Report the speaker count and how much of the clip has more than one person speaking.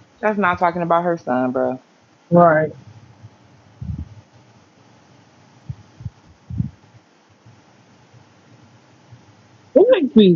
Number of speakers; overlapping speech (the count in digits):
2, no overlap